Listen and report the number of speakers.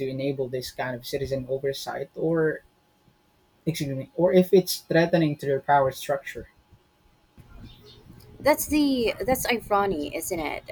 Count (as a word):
two